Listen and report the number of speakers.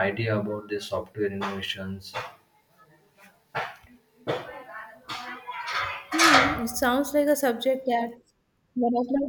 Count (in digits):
2